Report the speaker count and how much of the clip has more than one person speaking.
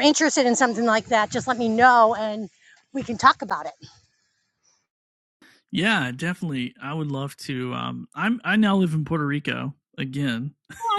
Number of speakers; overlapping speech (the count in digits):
2, no overlap